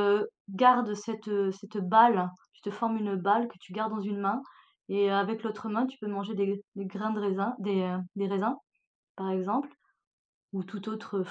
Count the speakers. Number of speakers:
1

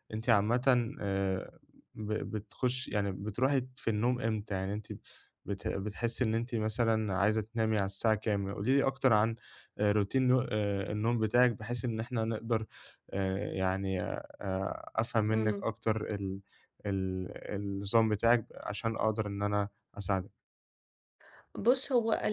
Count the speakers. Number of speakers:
2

